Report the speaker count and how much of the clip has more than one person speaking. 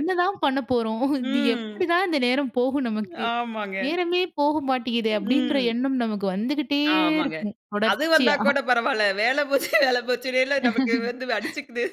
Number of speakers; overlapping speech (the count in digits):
2, about 18%